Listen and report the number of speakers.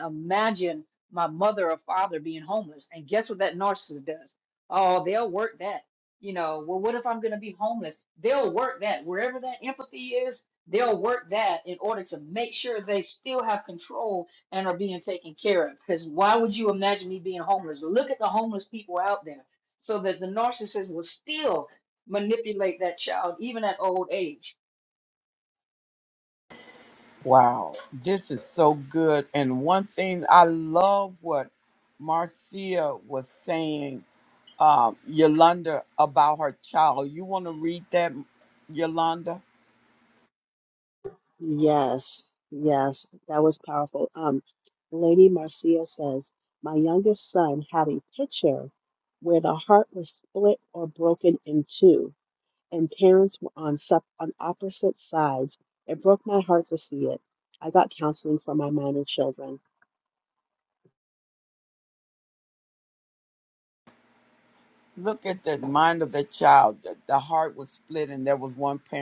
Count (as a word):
three